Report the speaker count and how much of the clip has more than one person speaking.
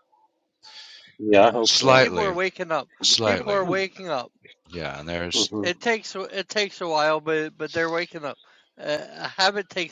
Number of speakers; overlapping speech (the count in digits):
3, about 14%